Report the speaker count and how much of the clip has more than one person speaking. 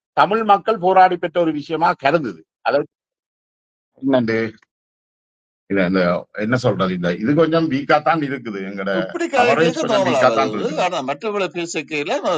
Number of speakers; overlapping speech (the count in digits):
2, about 12%